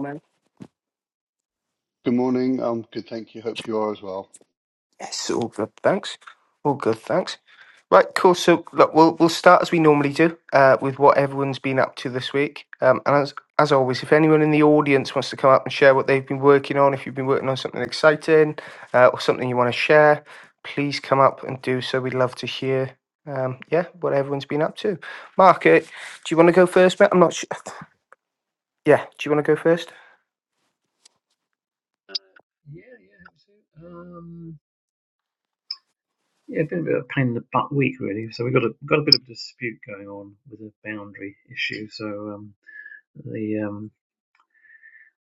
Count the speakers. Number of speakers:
3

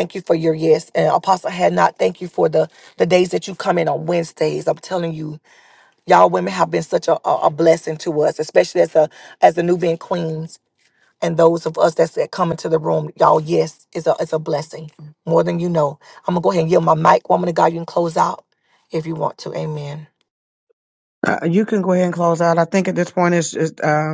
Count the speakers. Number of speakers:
2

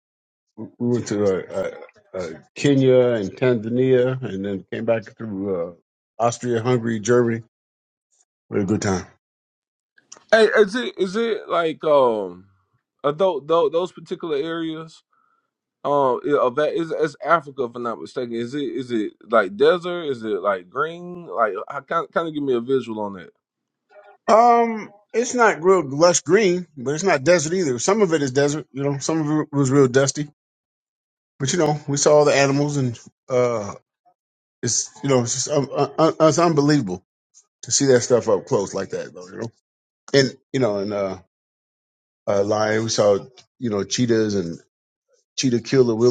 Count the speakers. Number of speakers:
2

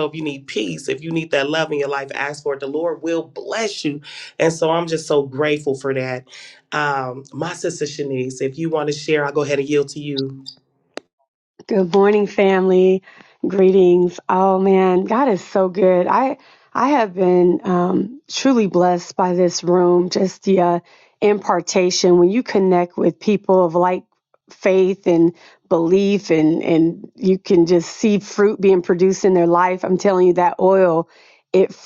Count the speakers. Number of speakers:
2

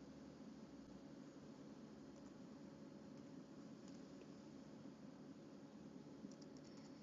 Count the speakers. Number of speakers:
0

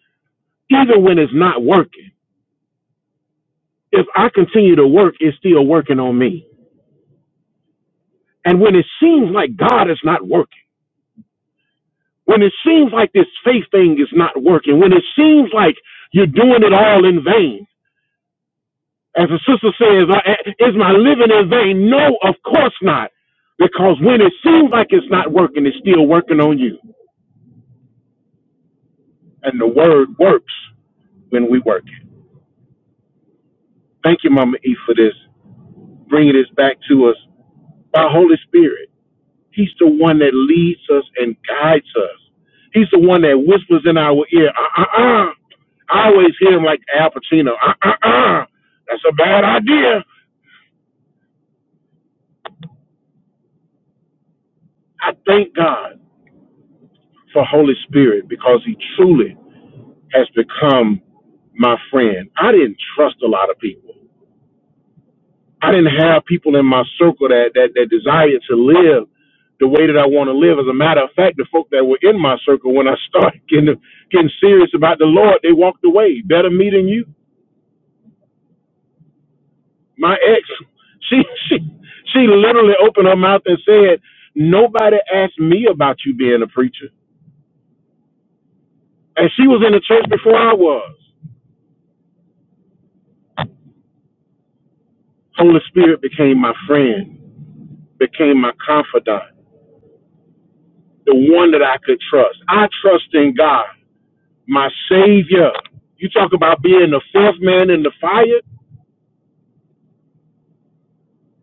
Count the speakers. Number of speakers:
1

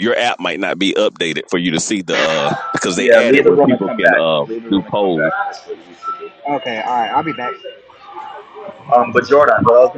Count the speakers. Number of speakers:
3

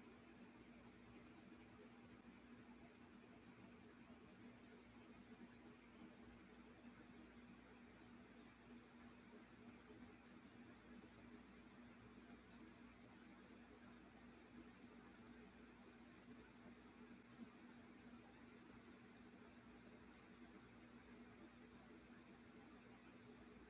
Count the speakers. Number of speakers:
0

